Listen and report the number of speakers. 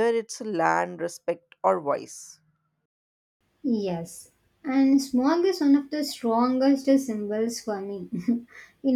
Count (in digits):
2